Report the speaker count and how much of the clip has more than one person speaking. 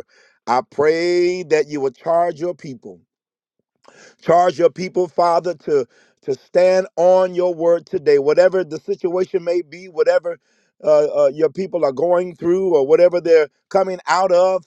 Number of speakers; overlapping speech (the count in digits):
1, no overlap